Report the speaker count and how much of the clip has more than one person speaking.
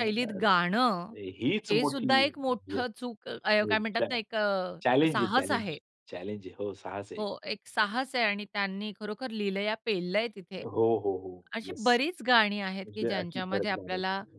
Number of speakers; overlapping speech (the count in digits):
2, about 27%